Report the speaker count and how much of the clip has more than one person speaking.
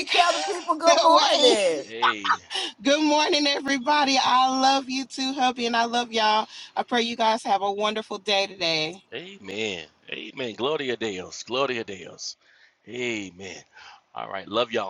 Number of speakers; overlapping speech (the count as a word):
three, about 6%